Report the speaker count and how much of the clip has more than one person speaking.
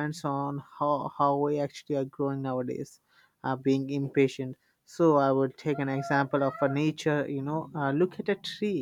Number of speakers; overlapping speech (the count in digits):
1, no overlap